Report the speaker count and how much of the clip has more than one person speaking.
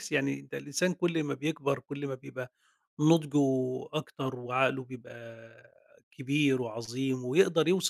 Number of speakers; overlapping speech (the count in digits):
1, no overlap